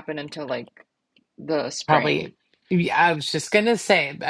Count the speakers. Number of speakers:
2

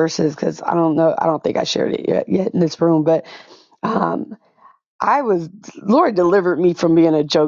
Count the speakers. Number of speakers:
1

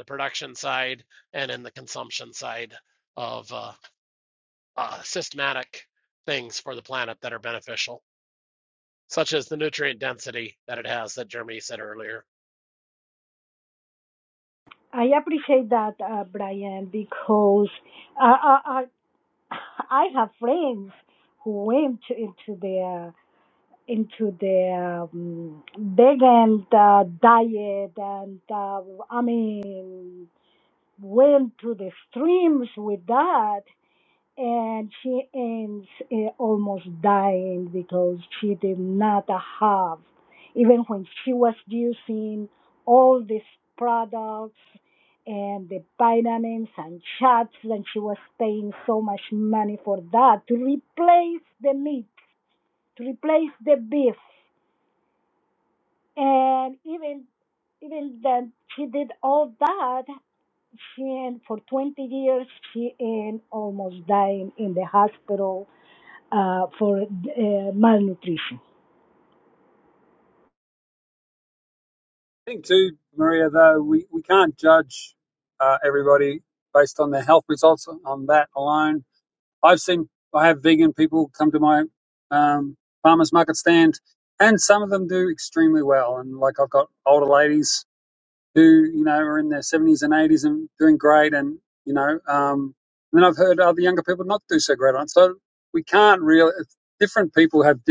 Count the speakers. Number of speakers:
3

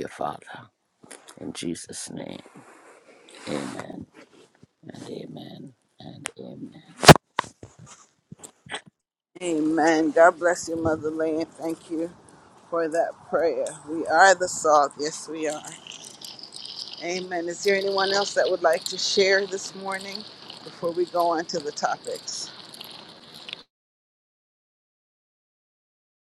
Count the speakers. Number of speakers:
2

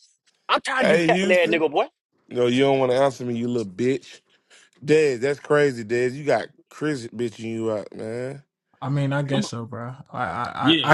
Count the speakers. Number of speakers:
3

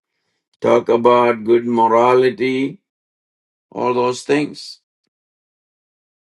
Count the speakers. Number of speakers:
1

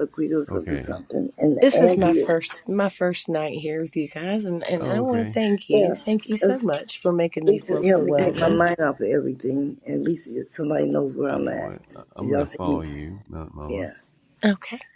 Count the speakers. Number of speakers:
3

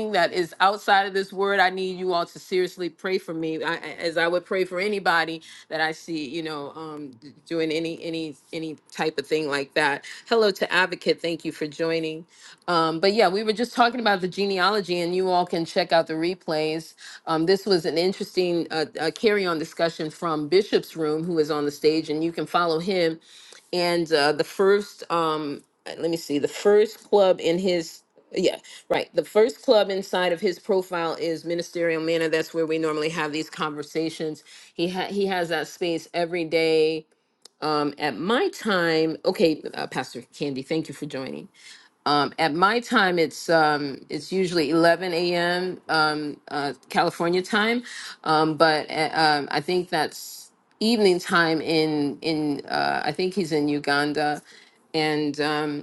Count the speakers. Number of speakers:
1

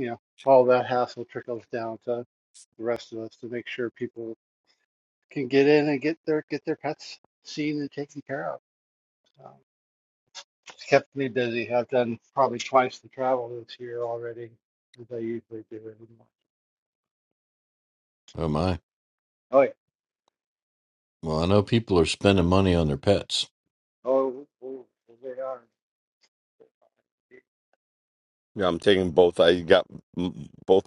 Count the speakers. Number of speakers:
3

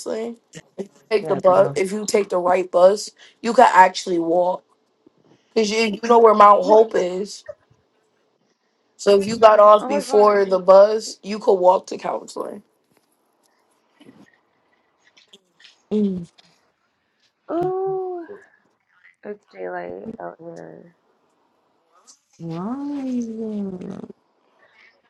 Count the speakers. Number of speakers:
3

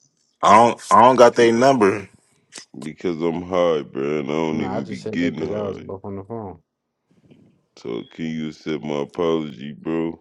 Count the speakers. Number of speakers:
3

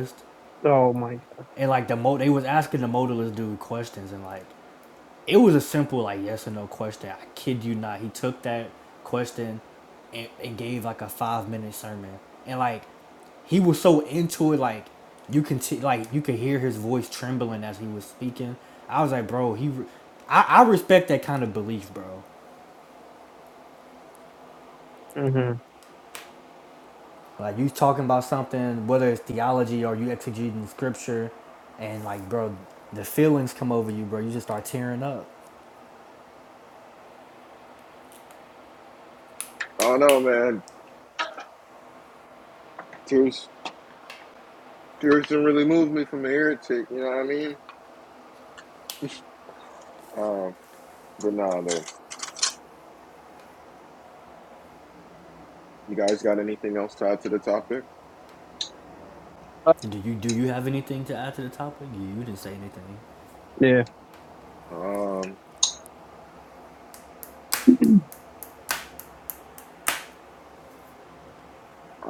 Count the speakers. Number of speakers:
3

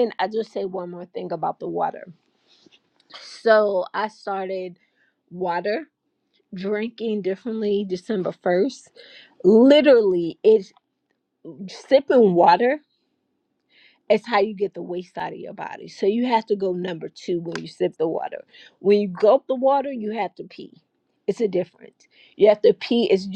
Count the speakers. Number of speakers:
1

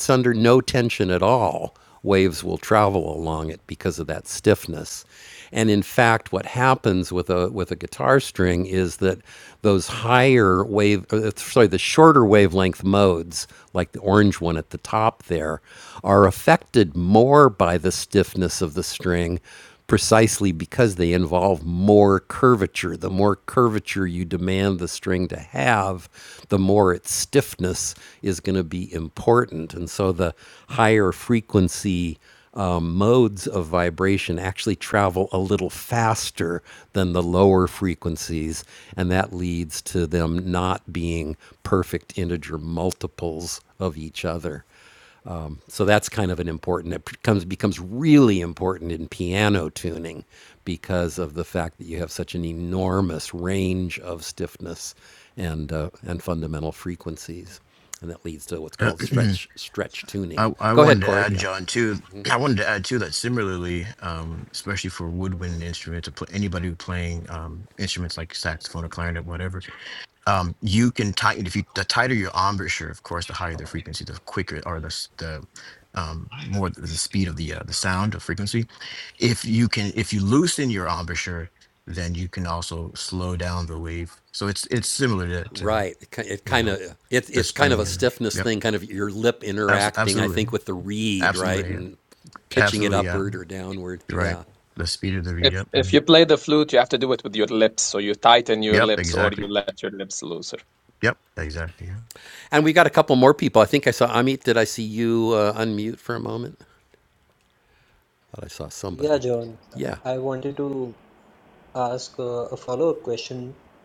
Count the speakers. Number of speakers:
4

